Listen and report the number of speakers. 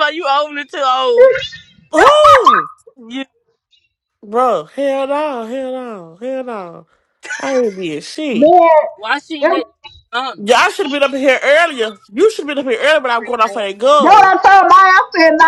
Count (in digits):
3